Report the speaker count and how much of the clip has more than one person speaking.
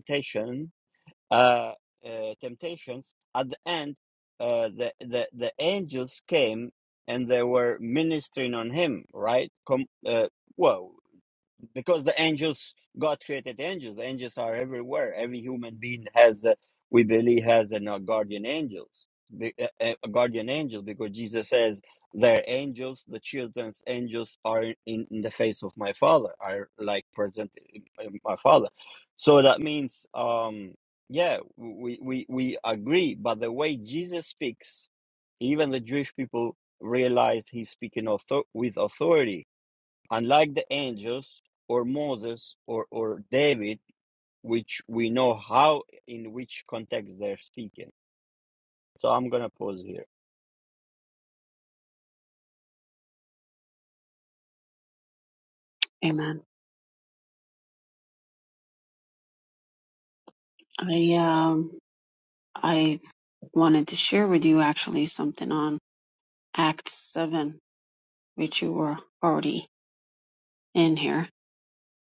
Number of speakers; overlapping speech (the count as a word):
two, no overlap